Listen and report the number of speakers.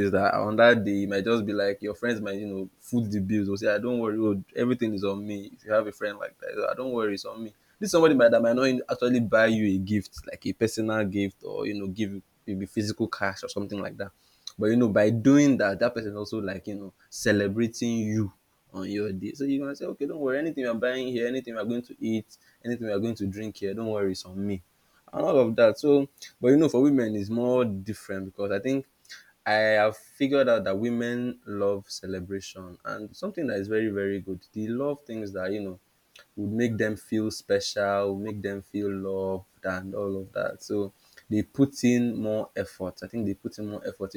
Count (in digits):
1